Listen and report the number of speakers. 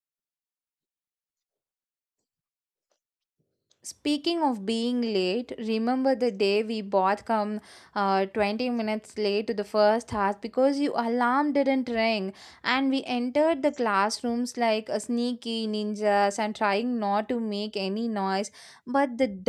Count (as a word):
one